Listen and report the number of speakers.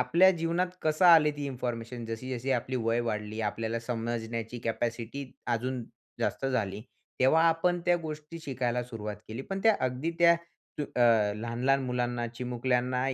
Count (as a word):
one